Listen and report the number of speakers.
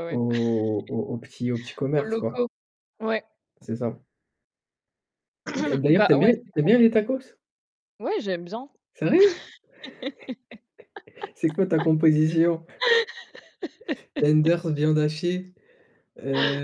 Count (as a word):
two